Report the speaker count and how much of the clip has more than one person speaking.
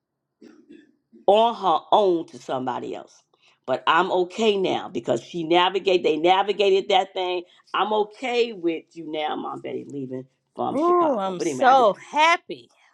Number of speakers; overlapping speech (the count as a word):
two, about 9%